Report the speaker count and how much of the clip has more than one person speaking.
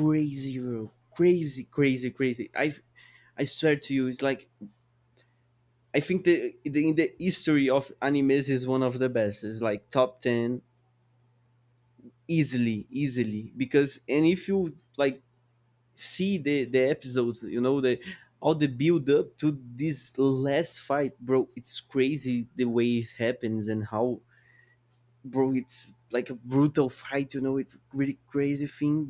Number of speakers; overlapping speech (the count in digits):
1, no overlap